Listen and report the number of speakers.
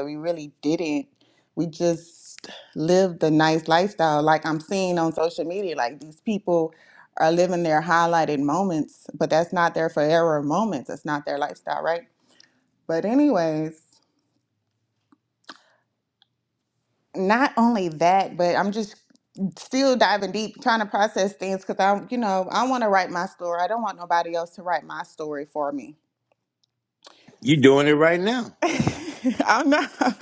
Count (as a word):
two